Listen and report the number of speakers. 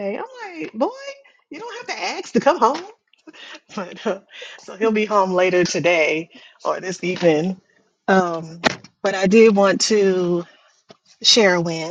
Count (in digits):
1